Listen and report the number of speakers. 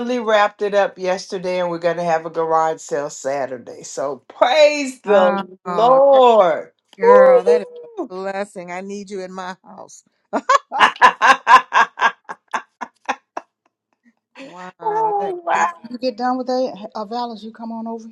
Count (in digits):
3